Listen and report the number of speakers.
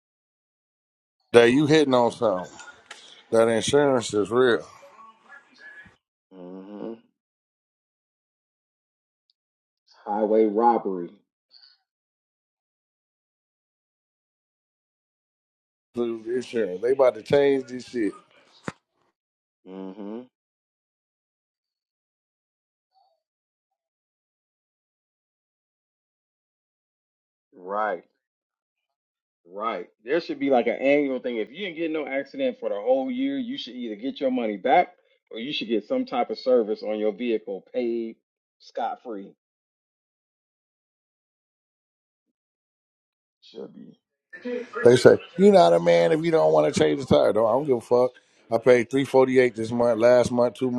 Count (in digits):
2